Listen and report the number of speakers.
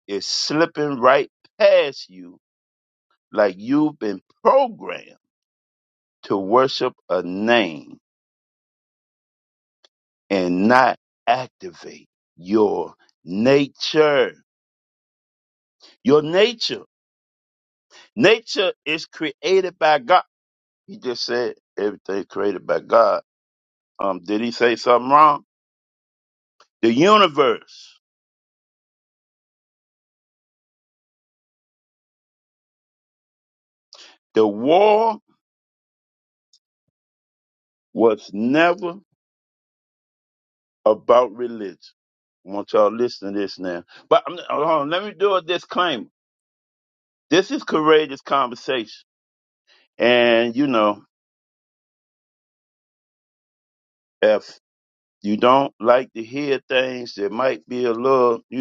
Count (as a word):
one